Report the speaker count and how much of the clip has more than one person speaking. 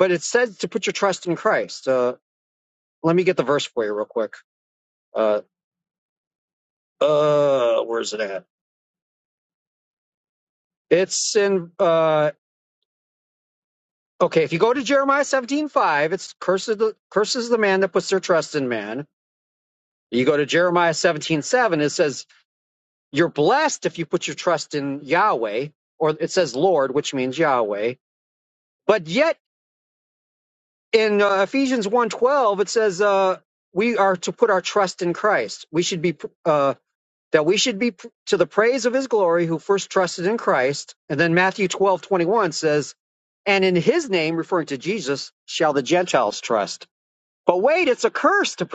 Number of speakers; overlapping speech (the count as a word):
one, no overlap